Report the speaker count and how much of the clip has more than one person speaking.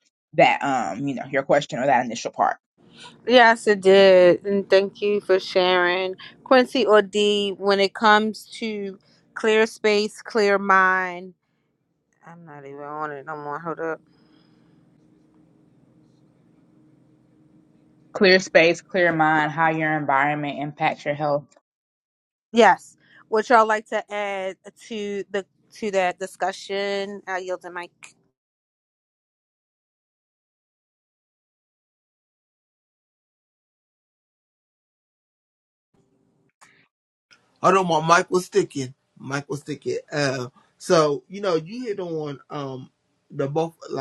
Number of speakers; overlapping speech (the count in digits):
3, no overlap